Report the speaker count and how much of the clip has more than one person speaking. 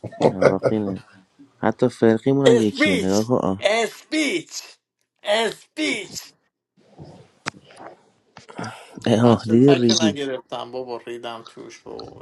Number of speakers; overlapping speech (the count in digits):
2, about 15%